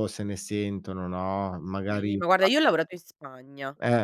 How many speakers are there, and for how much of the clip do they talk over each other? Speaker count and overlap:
two, about 15%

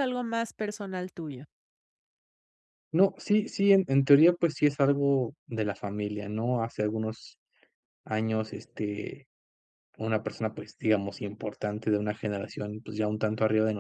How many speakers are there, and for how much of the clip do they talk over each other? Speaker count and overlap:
two, no overlap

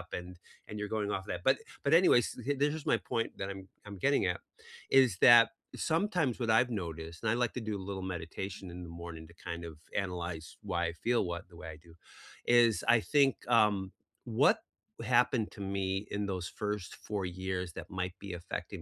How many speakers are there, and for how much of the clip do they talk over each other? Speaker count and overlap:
one, no overlap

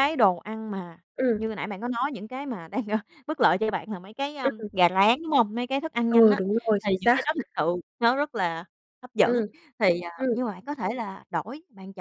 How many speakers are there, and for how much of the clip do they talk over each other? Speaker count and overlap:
two, about 12%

